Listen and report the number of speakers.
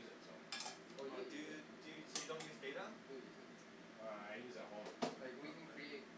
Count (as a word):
three